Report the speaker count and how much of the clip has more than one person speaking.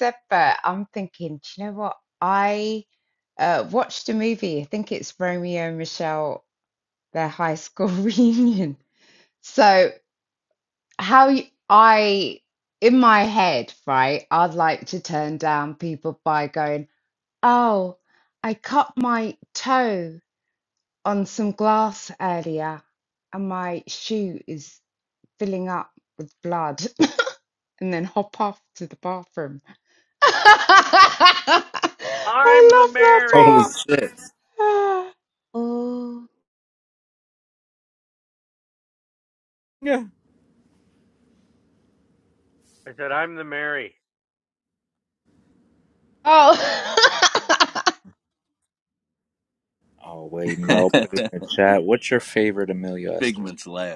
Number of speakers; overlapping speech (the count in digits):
4, about 4%